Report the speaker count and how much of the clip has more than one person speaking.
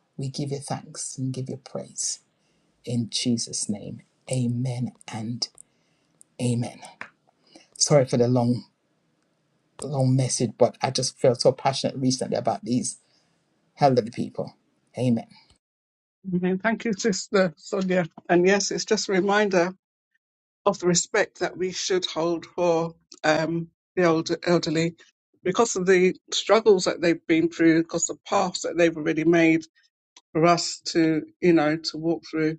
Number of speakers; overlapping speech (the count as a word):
two, no overlap